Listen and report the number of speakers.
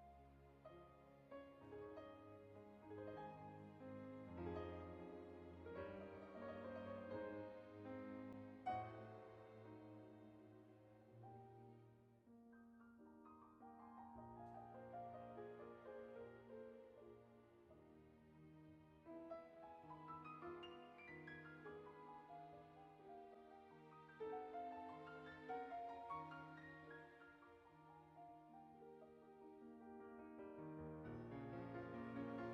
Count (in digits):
0